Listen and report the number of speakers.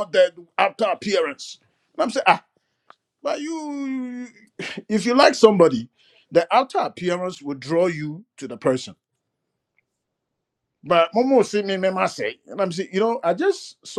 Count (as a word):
one